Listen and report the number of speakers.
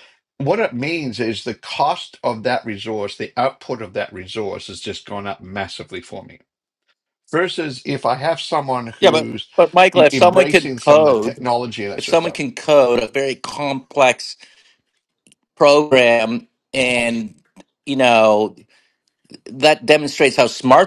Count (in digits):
2